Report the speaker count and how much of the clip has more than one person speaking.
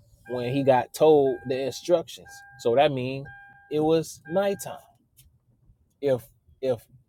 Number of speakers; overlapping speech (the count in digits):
1, no overlap